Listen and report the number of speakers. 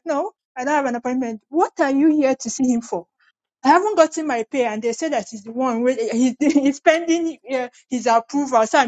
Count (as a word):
one